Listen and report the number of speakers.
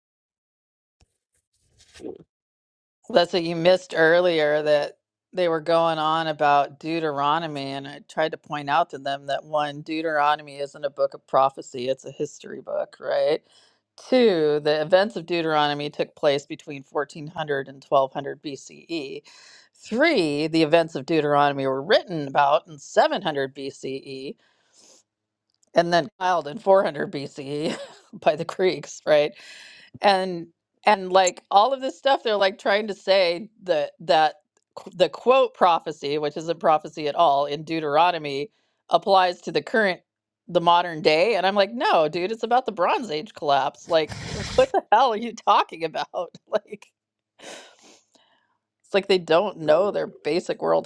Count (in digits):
1